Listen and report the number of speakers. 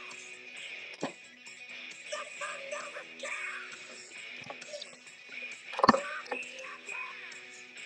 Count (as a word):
zero